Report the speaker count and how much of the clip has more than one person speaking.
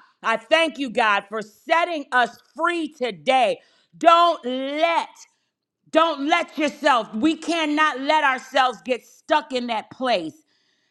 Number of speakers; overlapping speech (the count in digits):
1, no overlap